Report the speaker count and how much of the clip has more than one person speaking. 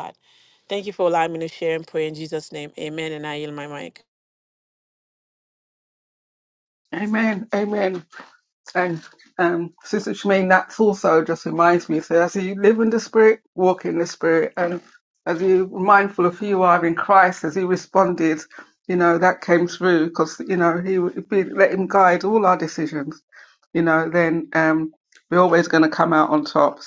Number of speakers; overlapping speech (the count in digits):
2, no overlap